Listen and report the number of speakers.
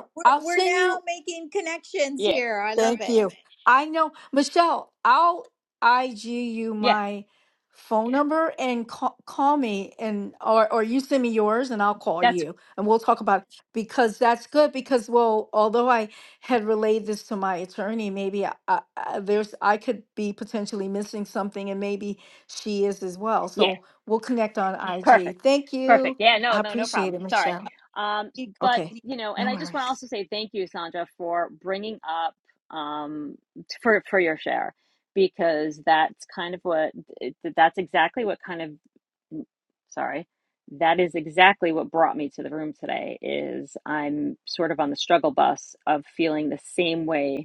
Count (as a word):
three